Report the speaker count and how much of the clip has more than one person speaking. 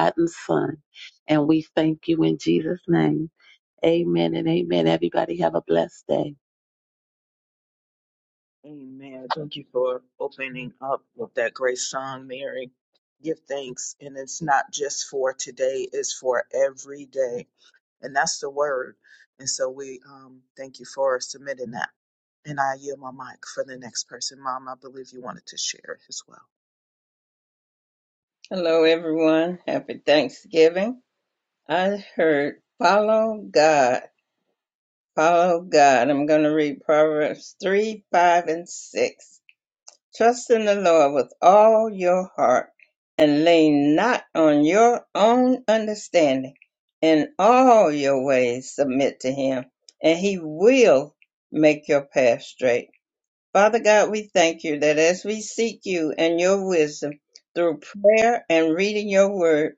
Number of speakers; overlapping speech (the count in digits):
3, no overlap